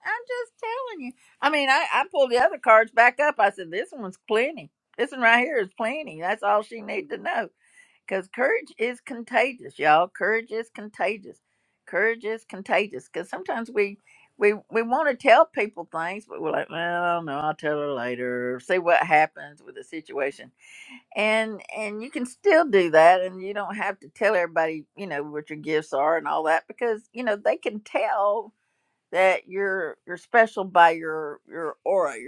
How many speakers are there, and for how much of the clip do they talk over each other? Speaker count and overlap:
1, no overlap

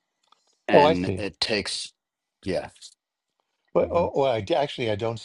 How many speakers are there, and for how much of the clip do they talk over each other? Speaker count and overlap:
2, about 14%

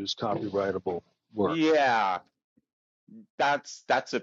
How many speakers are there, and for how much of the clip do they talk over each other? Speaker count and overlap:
2, about 7%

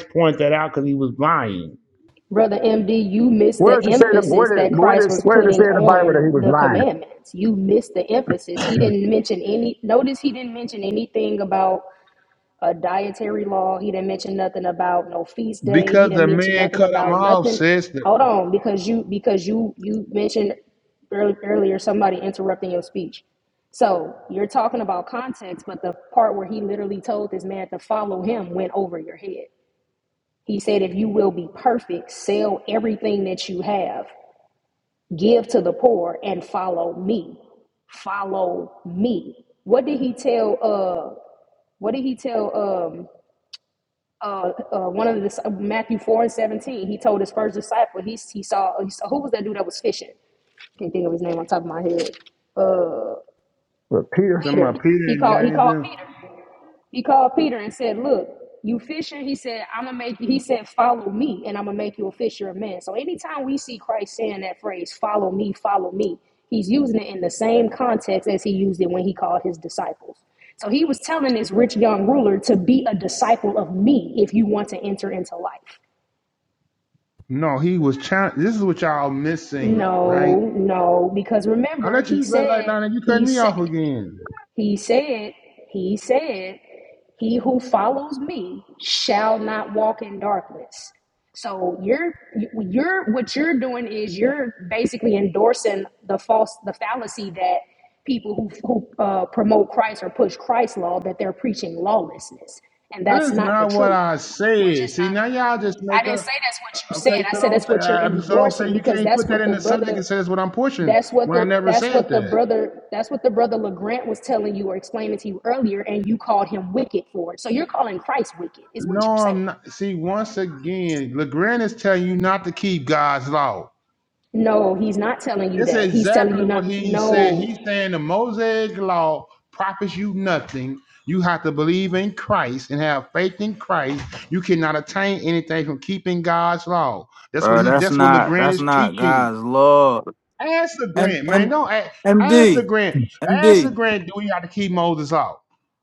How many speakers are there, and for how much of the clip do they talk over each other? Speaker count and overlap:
4, about 15%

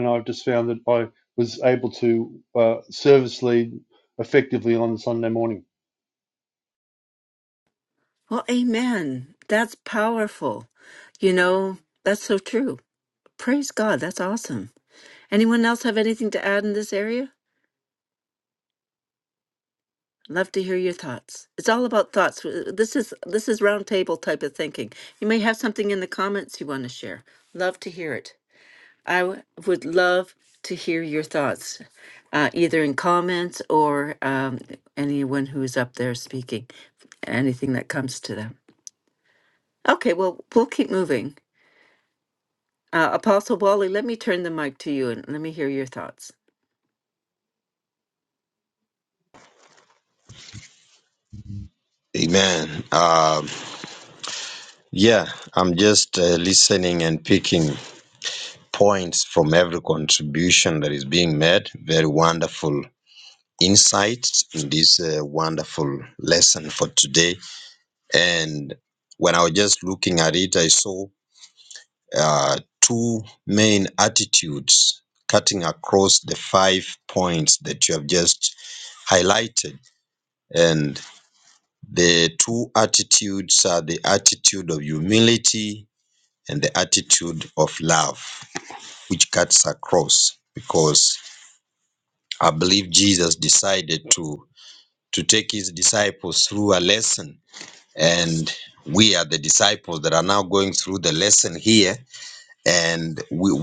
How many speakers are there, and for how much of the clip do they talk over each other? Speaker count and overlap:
3, no overlap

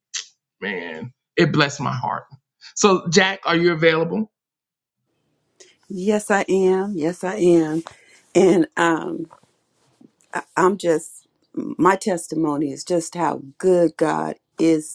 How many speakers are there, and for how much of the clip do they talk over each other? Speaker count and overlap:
2, no overlap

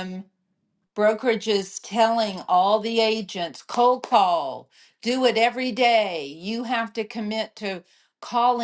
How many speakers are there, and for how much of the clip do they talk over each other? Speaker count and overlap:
1, no overlap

